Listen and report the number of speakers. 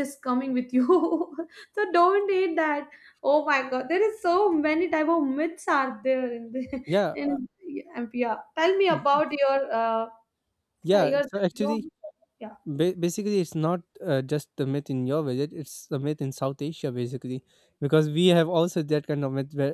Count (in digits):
2